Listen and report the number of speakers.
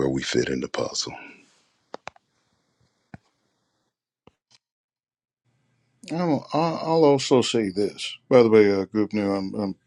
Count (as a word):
two